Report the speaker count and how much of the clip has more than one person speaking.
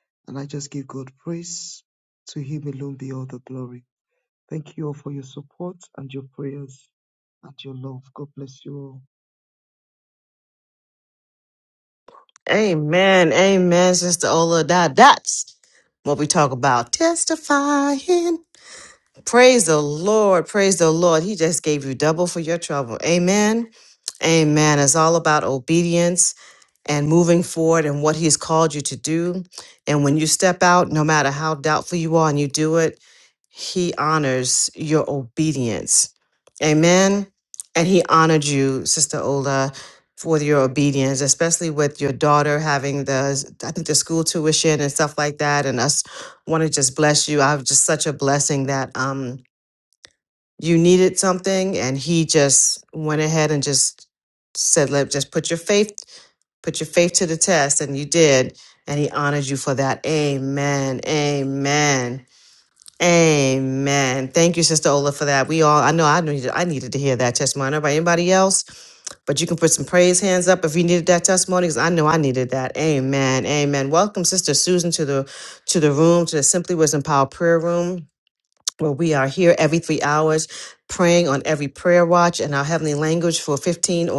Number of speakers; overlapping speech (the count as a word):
two, no overlap